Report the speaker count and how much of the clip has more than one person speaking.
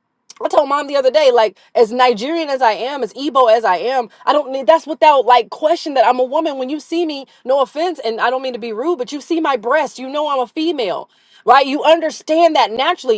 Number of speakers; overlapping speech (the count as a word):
one, no overlap